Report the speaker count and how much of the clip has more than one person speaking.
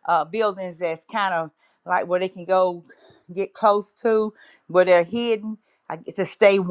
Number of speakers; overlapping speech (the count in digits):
1, no overlap